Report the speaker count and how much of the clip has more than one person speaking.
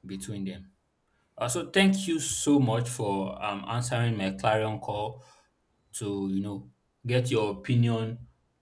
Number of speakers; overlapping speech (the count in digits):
1, no overlap